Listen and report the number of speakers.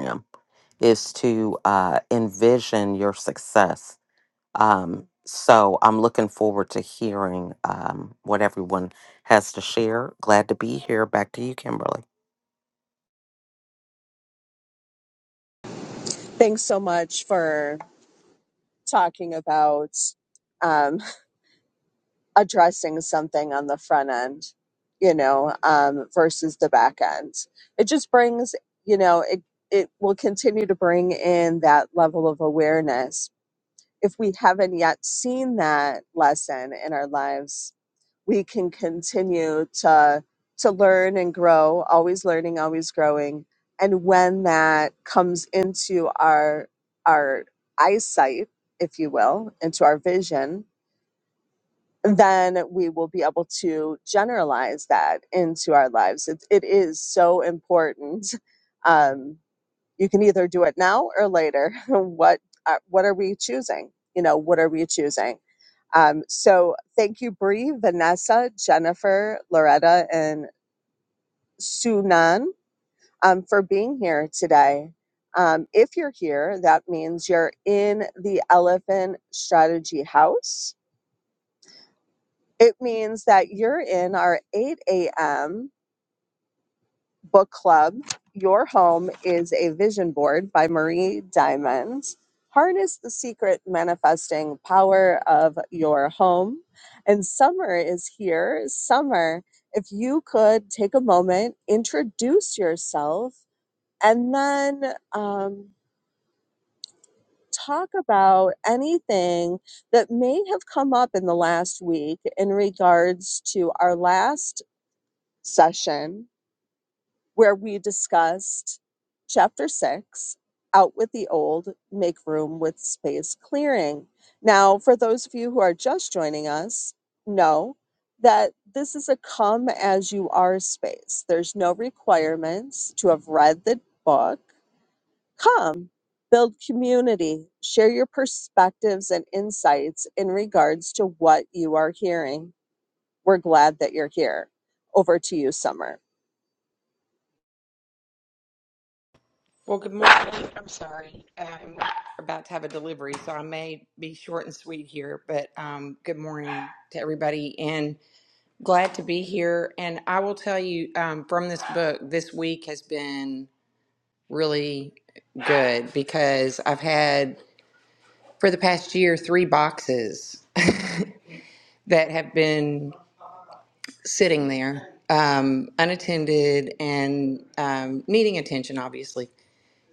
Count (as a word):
three